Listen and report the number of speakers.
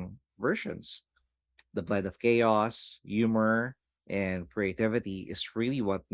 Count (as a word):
one